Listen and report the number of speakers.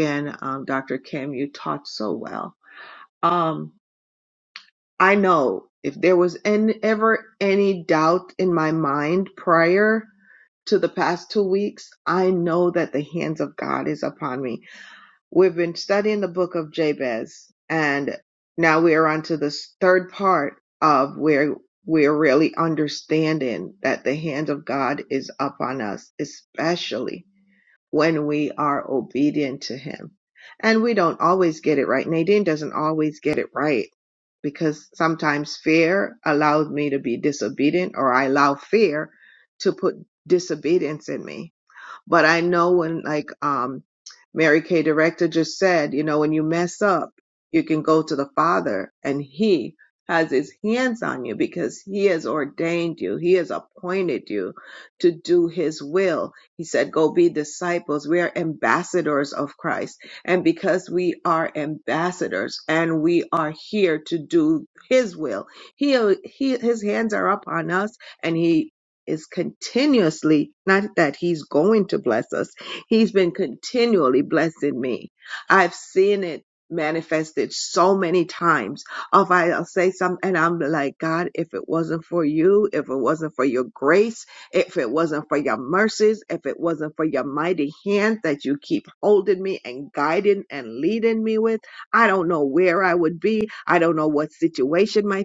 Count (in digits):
1